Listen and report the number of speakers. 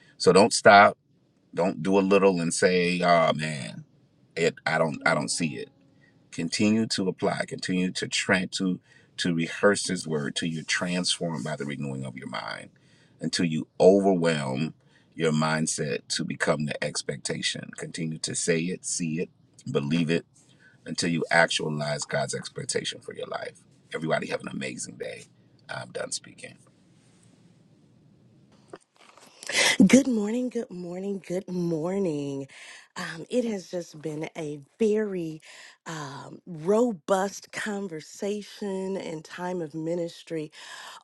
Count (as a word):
two